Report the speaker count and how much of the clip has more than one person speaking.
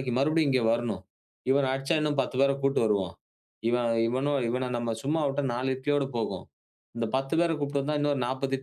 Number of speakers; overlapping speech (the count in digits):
1, no overlap